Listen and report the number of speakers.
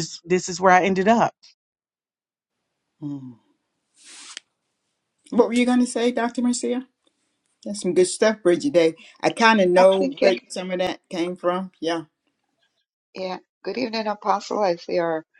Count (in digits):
3